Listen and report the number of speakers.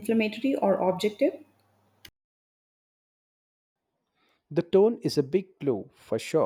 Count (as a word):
two